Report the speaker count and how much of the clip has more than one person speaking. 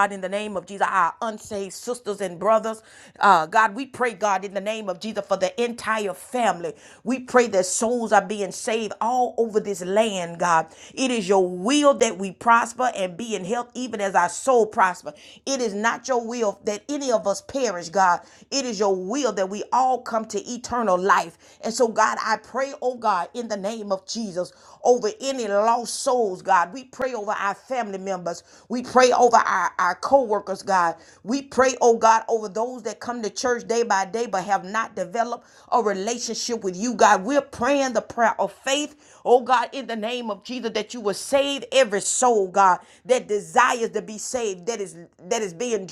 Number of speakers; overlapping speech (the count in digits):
1, no overlap